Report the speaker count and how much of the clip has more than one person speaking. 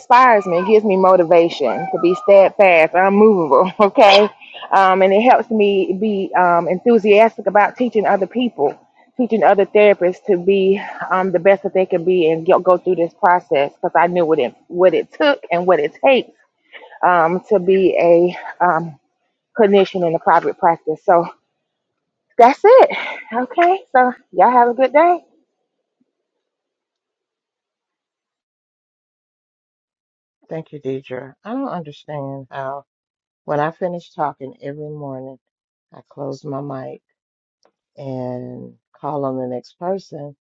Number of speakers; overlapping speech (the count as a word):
two, no overlap